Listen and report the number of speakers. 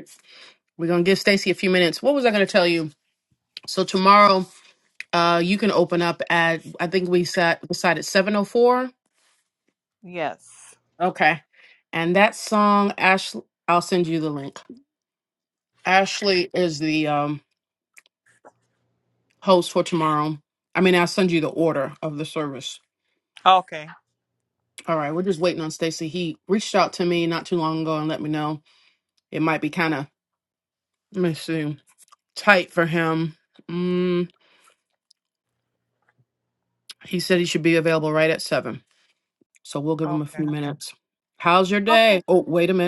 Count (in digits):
2